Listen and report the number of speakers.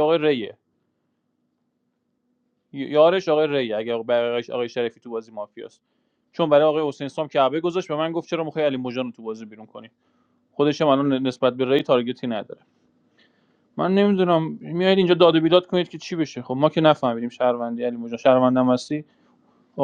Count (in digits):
1